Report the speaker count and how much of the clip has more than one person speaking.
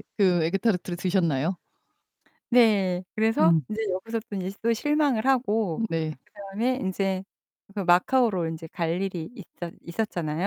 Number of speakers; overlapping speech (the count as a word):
two, about 2%